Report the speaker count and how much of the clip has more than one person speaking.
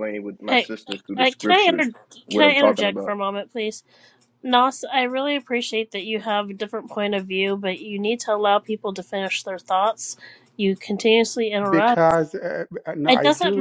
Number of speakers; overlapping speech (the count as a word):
three, about 18%